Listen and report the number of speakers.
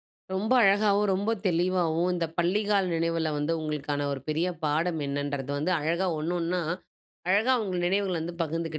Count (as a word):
one